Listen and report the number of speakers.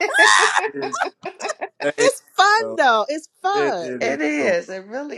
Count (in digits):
3